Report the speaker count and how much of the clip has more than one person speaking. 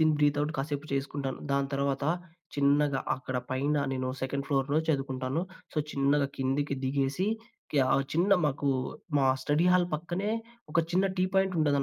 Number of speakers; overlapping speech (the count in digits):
1, no overlap